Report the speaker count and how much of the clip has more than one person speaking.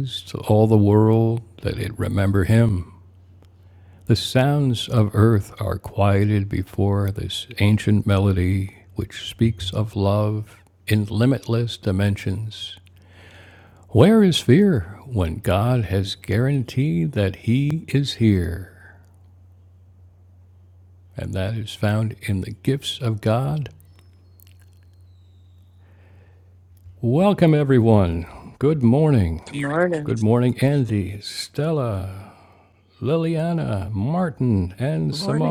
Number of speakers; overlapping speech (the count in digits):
2, about 2%